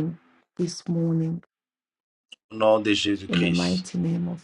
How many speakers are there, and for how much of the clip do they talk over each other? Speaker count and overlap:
2, about 12%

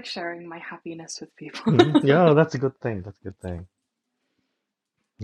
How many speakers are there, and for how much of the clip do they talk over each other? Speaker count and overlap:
2, about 2%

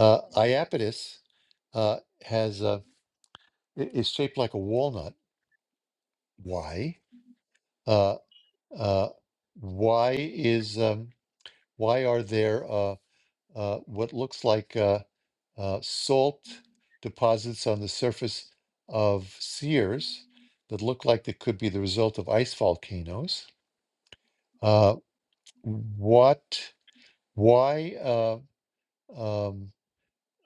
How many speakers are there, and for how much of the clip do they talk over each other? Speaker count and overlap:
1, no overlap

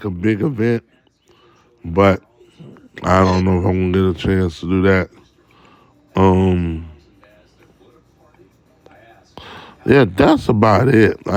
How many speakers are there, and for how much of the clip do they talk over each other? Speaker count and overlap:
1, no overlap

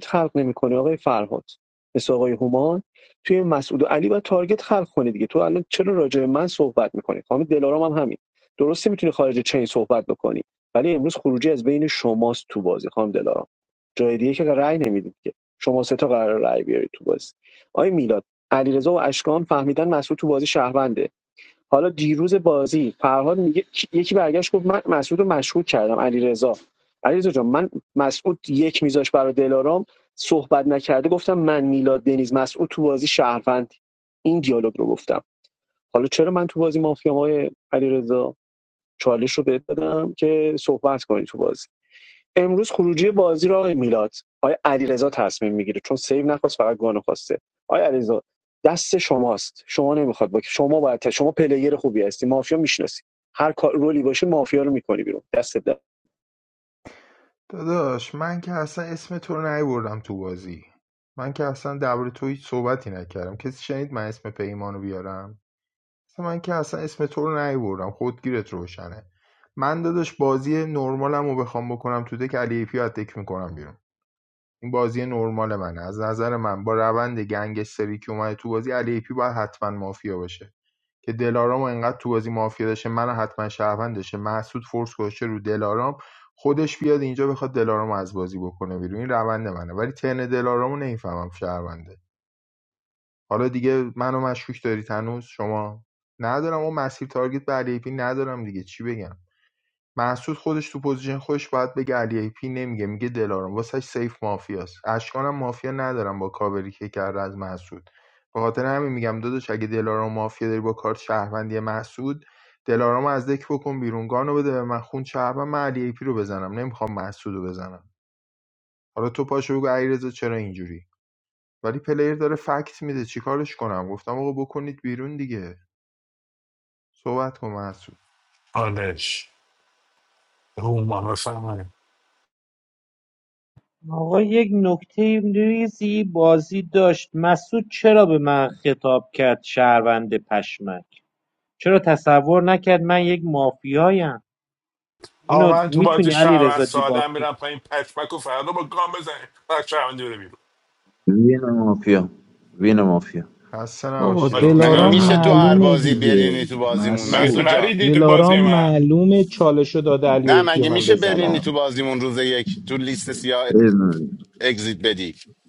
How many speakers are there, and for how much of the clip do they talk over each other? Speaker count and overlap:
7, about 5%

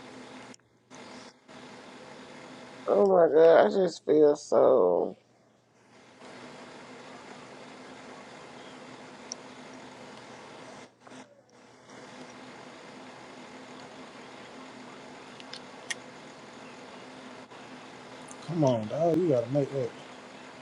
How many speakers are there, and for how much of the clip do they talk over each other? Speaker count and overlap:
2, no overlap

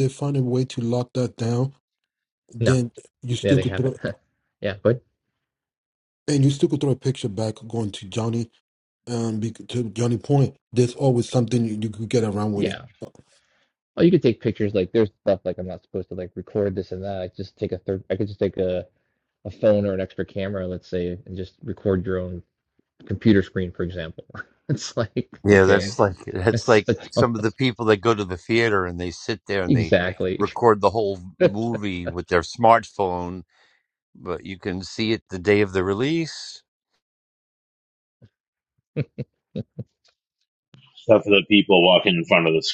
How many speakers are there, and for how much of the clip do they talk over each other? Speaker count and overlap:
4, about 6%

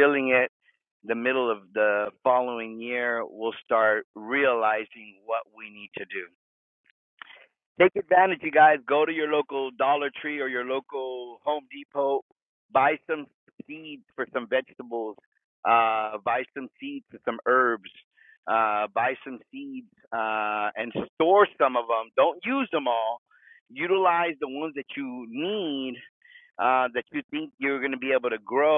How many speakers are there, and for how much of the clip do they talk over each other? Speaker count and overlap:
1, no overlap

